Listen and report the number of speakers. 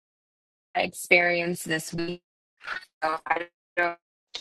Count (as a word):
one